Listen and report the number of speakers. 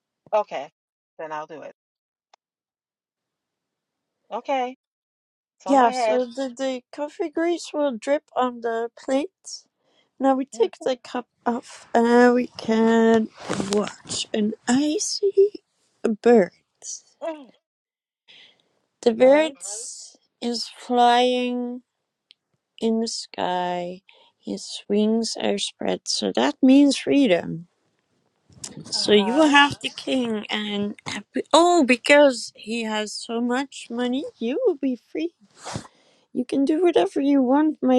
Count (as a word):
two